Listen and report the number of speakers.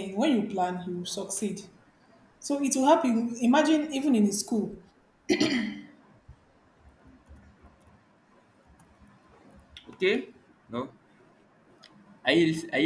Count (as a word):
two